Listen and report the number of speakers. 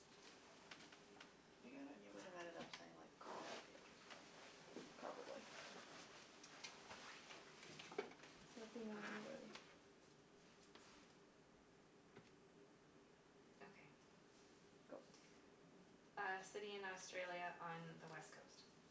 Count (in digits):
3